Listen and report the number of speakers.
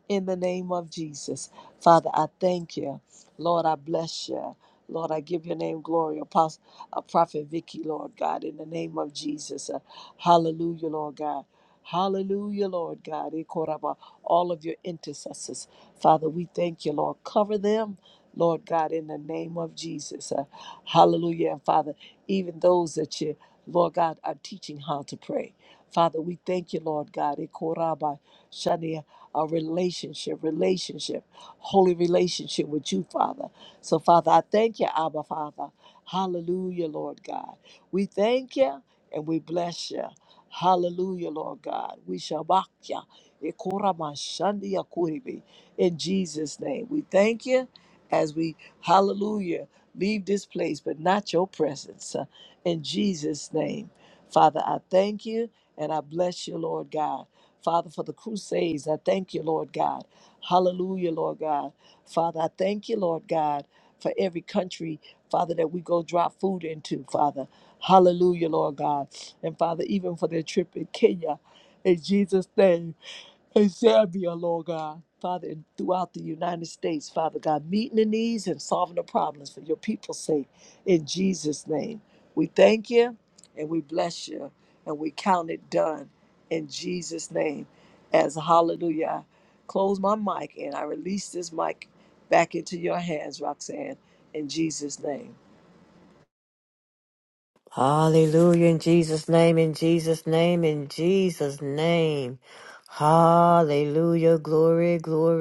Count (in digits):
2